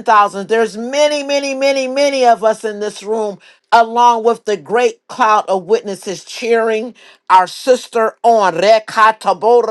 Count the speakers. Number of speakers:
one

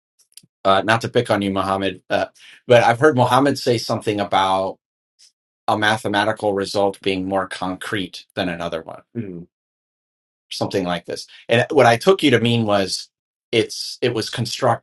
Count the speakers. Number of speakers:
one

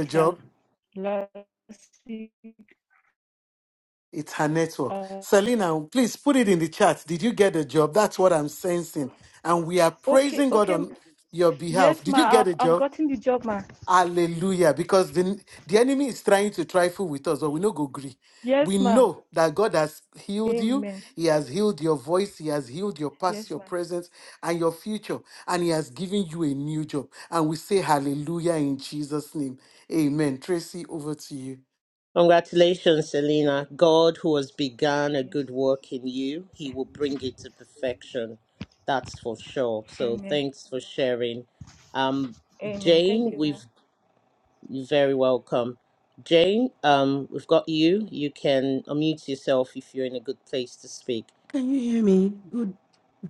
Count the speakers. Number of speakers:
four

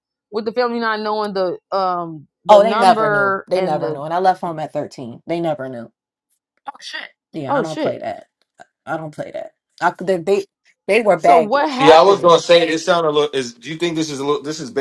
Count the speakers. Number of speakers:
three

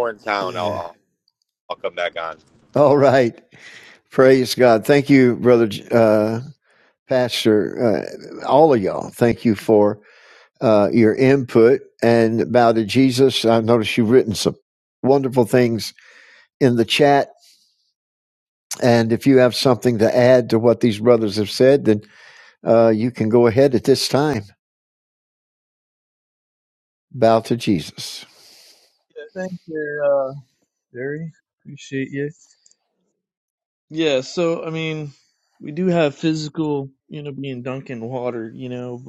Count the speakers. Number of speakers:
three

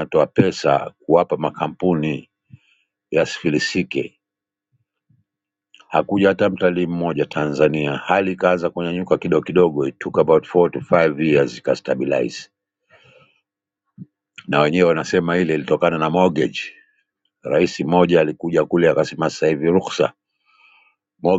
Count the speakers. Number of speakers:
one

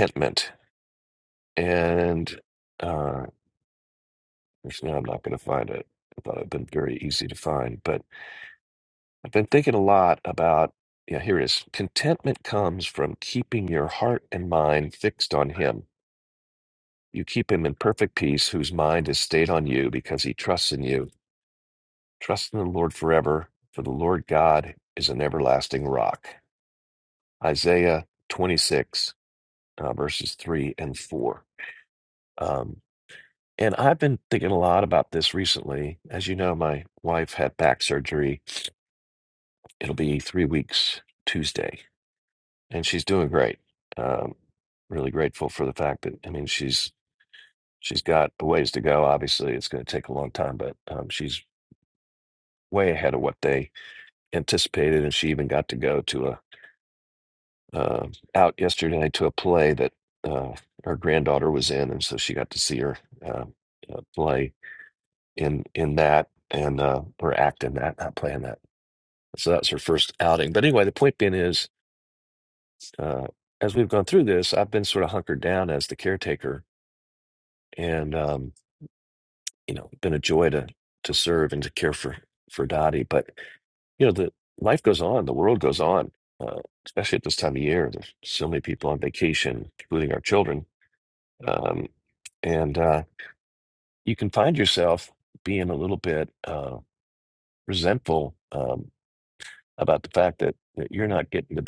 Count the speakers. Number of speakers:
one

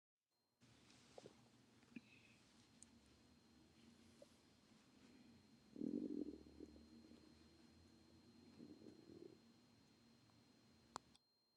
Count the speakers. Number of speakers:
zero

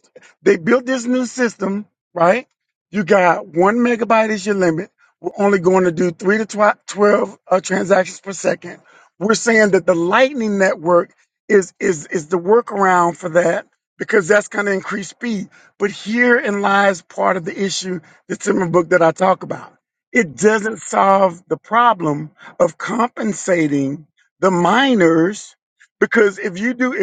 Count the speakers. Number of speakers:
one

